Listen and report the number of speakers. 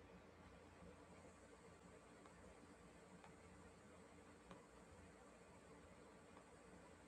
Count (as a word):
zero